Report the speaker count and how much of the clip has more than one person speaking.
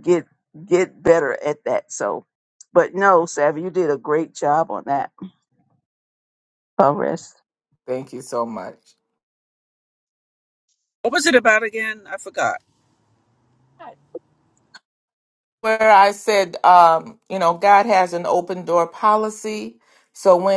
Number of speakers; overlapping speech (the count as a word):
three, no overlap